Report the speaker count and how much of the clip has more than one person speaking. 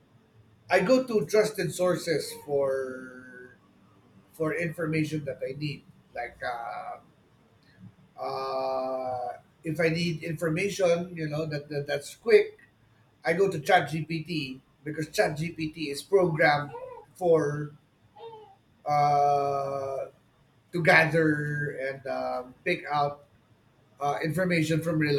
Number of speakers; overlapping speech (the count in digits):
1, no overlap